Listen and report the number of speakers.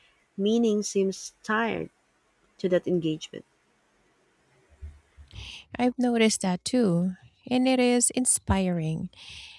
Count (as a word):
two